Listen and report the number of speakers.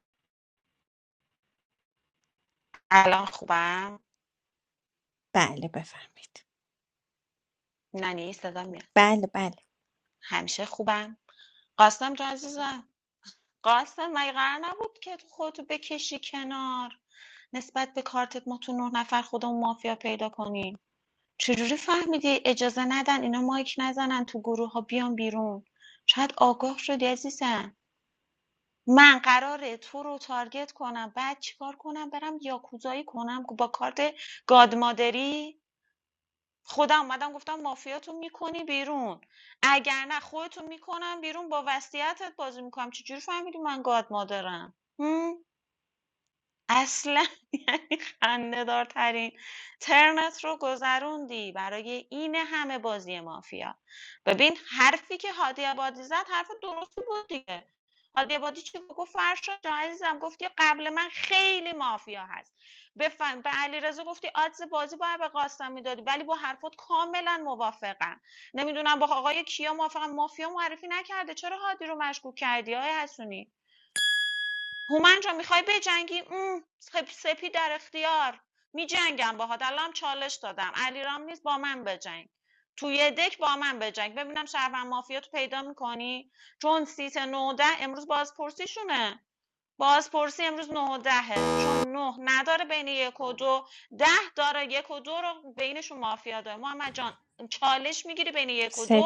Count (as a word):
two